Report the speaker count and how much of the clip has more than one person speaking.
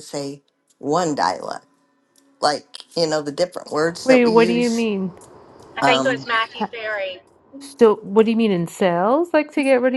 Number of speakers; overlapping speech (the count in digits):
3, about 12%